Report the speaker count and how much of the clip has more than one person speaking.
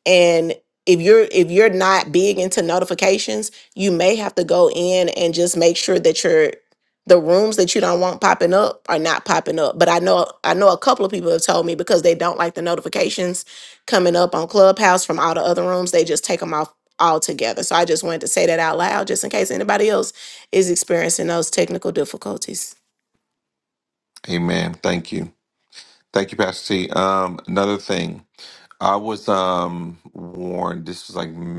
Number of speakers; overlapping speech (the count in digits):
2, no overlap